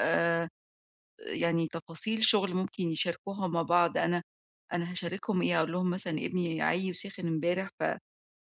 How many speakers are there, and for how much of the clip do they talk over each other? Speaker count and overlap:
one, no overlap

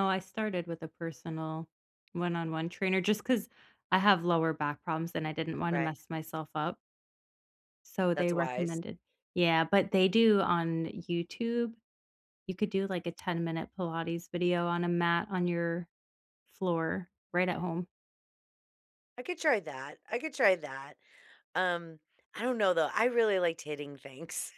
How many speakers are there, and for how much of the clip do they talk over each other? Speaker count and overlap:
two, about 3%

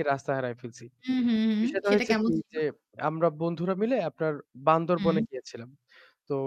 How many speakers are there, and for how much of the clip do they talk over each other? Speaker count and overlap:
two, about 19%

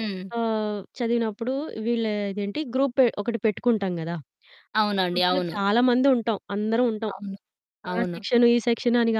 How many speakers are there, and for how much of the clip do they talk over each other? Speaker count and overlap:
two, about 10%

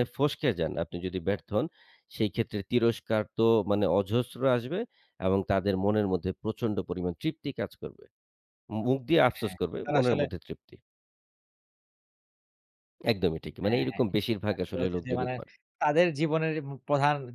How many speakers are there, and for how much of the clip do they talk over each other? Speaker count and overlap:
two, about 13%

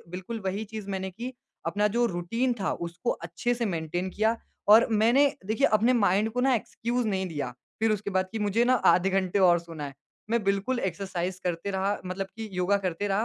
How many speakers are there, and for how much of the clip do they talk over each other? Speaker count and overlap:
one, no overlap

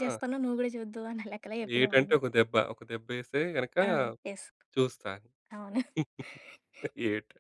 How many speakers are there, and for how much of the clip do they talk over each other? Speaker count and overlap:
two, about 8%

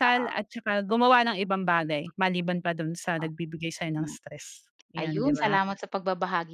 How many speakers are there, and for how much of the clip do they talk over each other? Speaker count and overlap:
two, about 20%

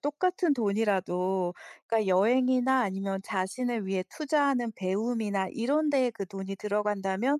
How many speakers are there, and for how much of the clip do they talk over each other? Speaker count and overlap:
one, no overlap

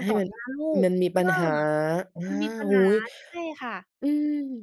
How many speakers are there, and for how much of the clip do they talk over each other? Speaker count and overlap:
two, about 30%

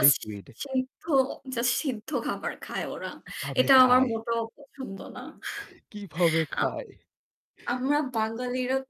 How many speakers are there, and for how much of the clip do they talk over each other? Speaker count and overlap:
two, about 12%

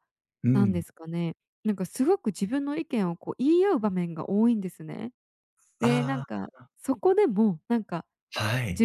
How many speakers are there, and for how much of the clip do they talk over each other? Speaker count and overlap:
two, about 13%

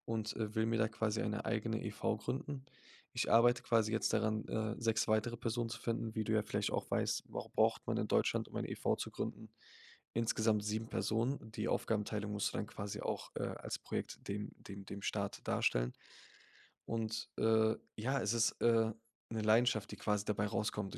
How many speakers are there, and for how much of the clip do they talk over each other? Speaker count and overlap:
one, no overlap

